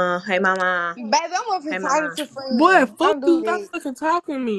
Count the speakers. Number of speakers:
three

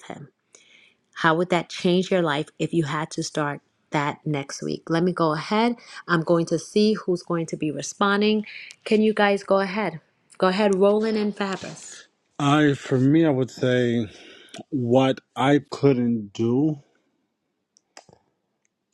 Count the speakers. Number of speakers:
two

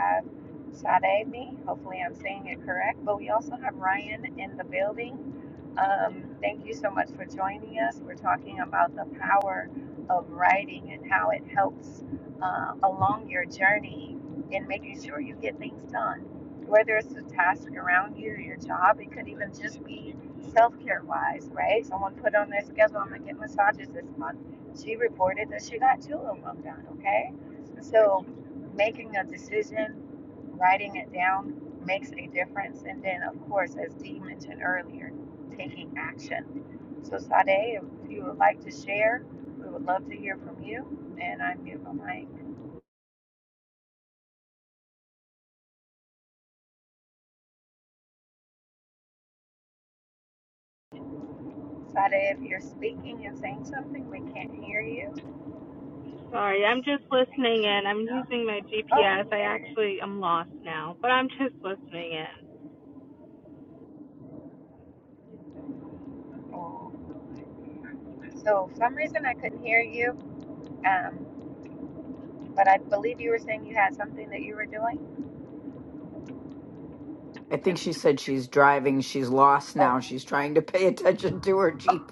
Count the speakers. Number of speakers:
three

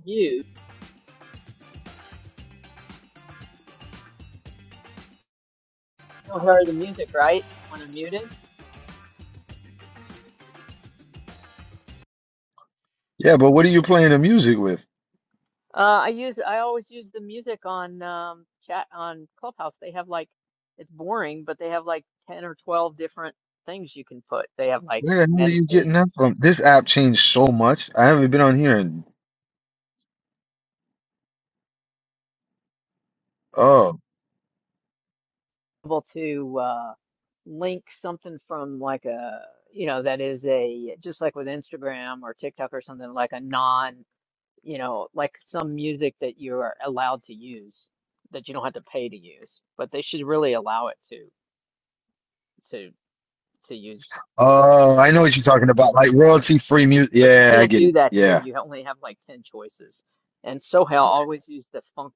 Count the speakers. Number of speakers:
two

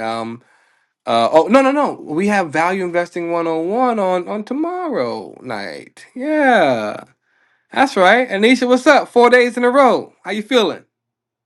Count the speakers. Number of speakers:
one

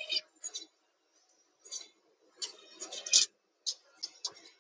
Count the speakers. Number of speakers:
zero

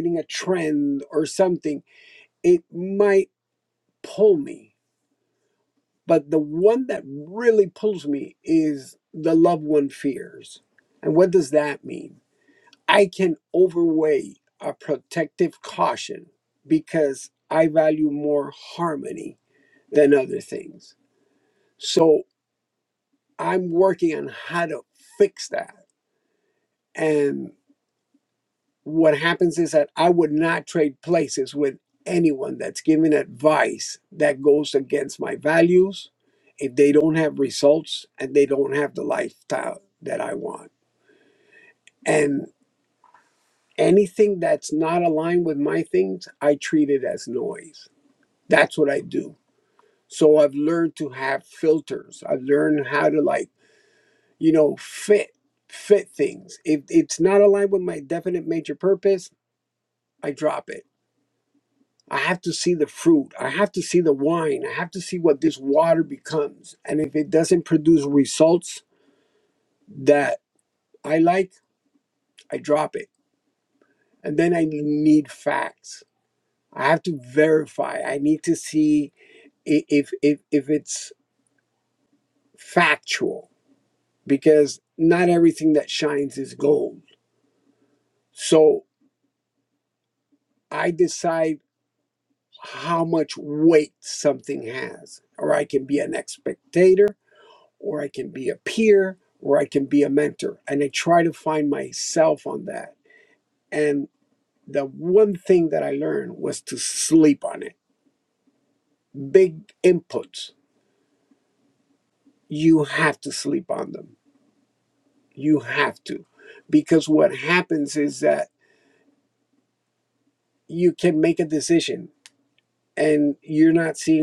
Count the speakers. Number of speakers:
one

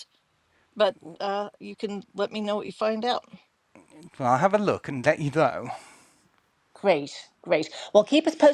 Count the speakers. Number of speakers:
three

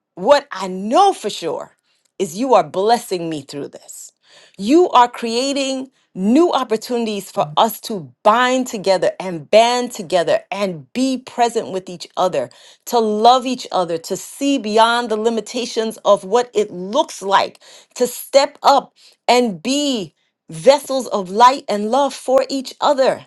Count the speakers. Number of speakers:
one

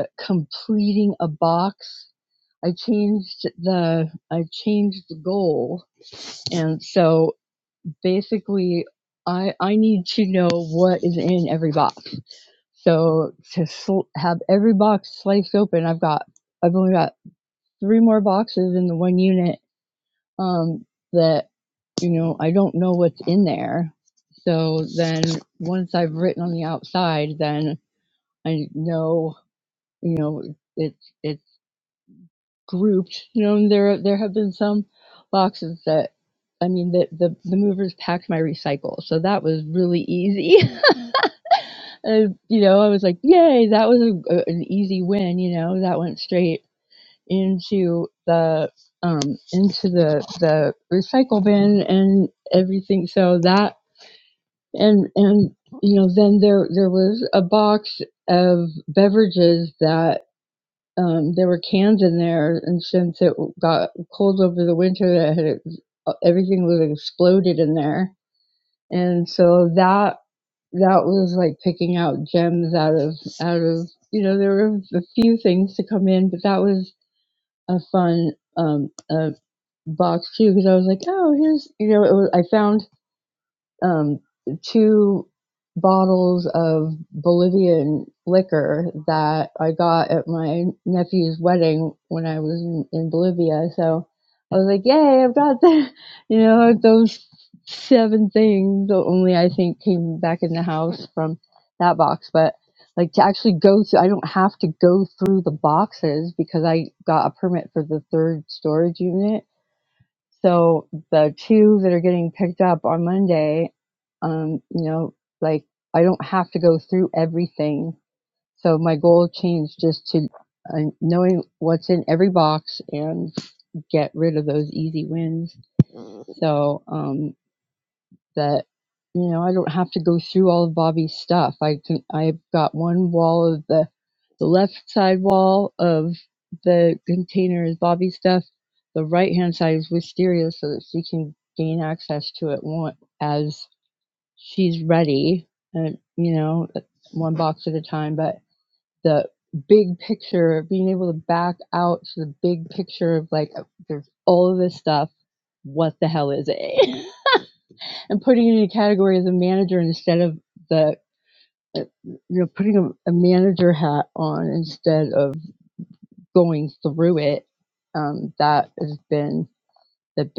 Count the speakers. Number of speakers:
one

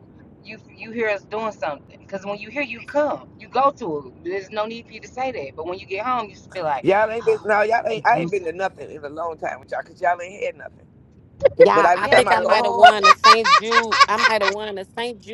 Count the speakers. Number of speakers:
three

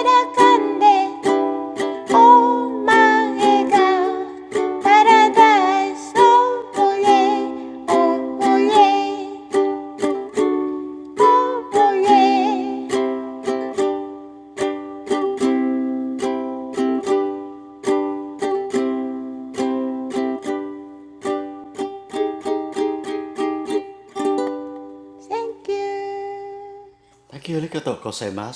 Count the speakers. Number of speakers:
two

